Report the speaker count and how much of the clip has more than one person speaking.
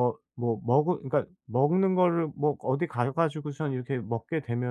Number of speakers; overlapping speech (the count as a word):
one, no overlap